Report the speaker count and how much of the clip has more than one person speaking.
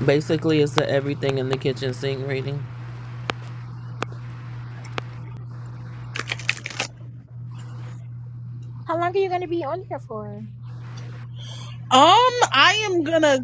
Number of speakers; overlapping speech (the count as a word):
three, no overlap